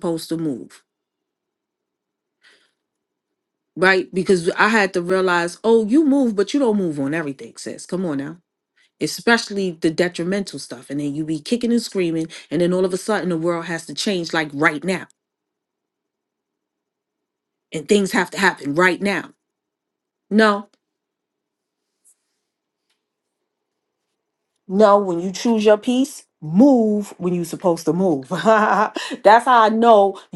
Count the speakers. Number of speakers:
one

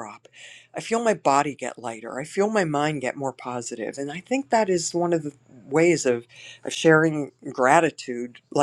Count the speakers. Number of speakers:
one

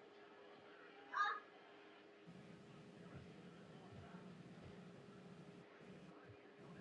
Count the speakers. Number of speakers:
zero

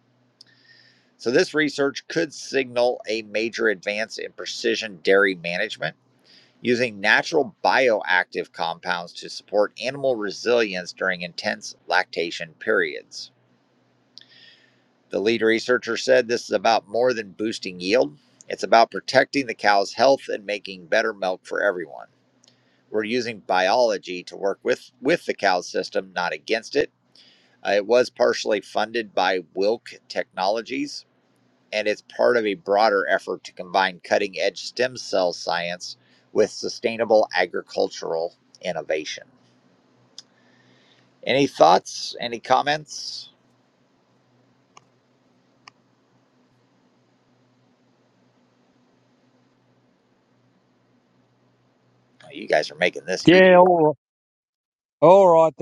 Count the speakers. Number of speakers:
two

